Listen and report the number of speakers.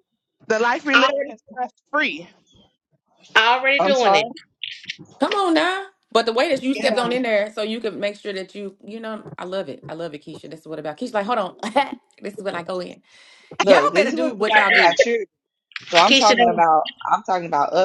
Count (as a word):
four